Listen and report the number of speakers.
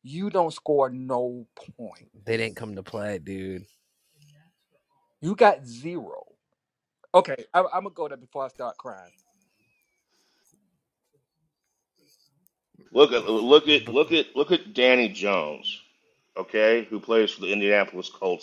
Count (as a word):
three